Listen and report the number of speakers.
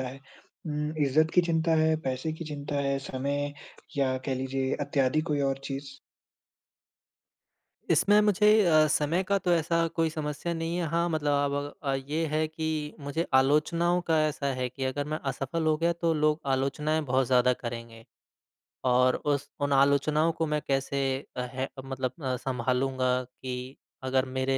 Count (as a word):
two